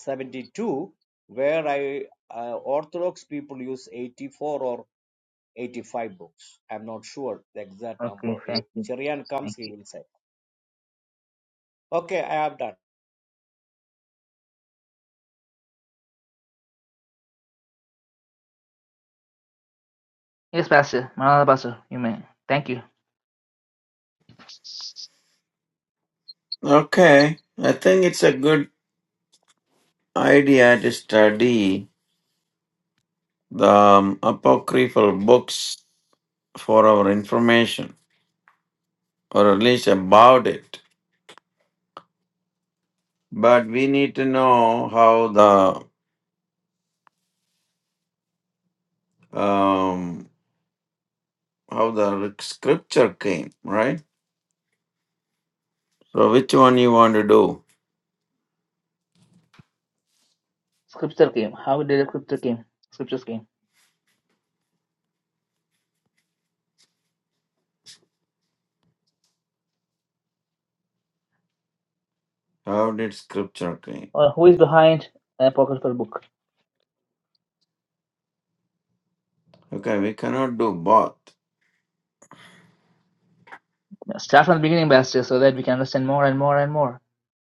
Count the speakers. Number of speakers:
three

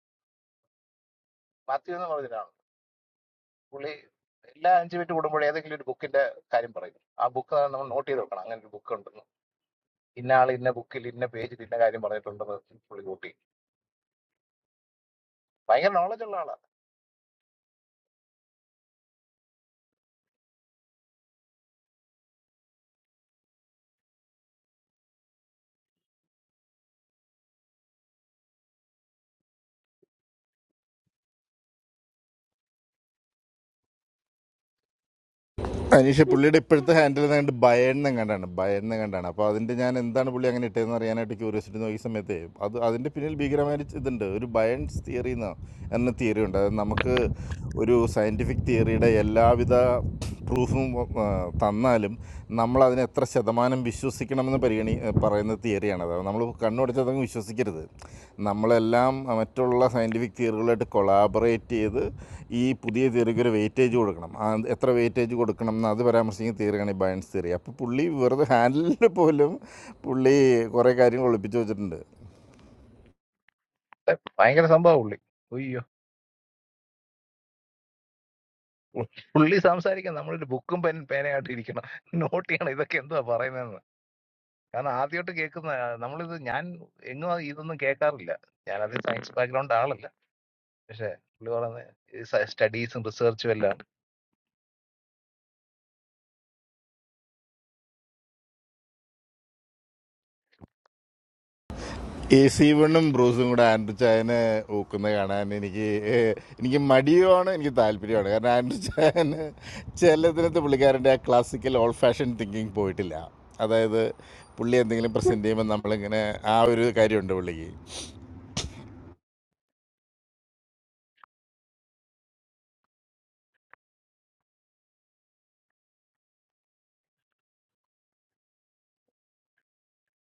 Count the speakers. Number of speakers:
two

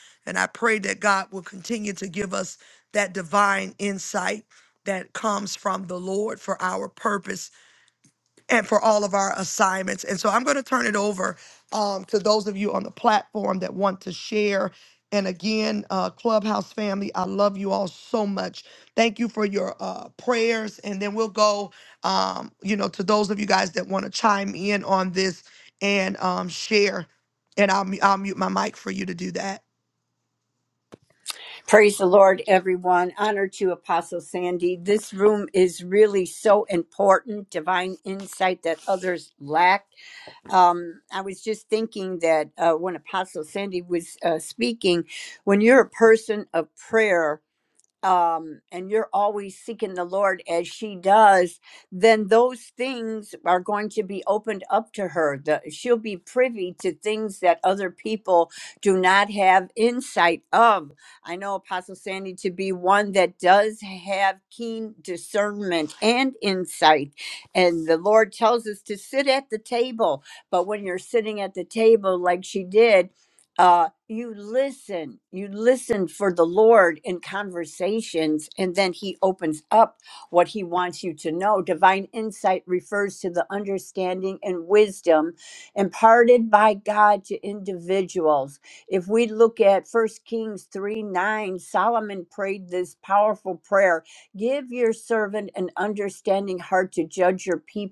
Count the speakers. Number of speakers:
two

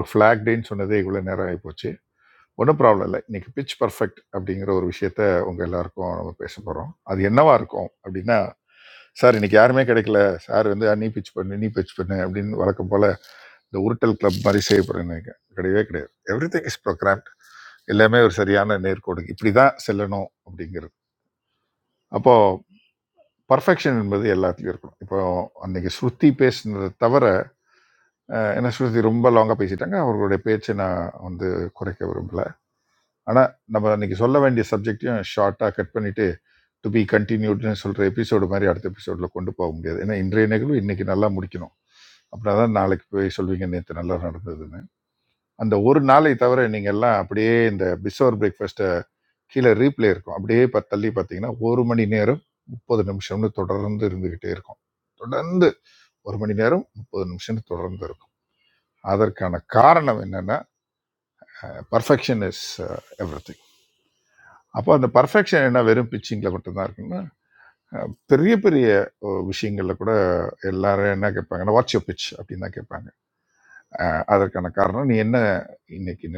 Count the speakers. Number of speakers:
one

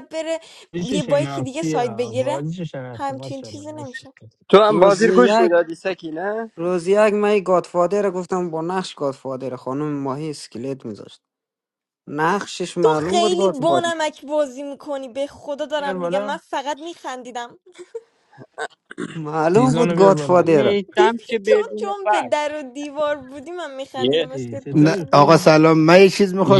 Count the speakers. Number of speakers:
six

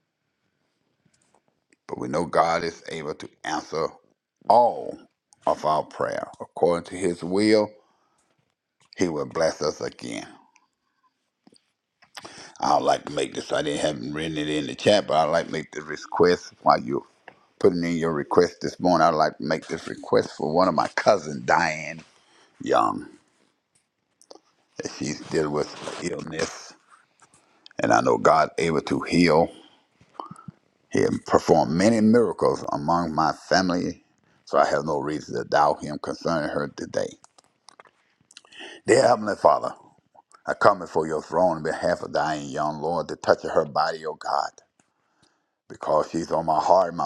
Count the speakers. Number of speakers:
one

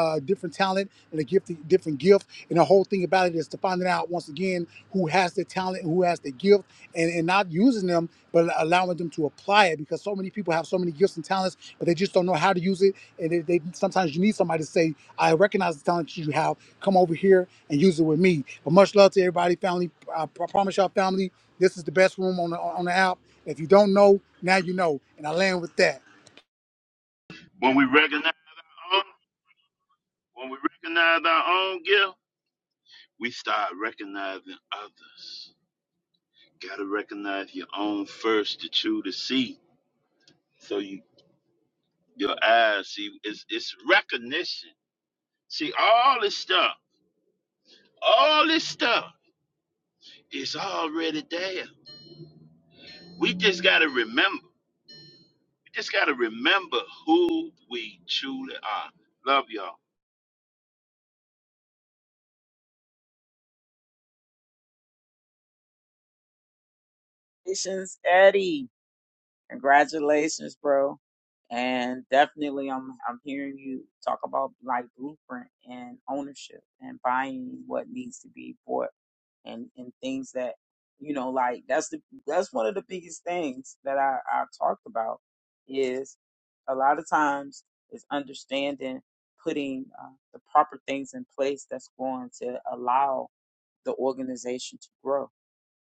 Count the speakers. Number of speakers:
three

